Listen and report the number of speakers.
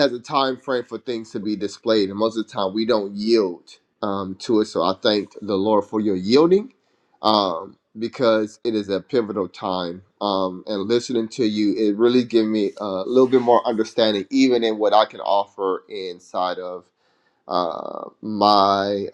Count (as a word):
one